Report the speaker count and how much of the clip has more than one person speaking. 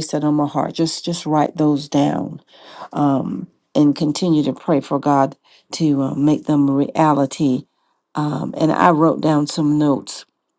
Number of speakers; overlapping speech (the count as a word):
one, no overlap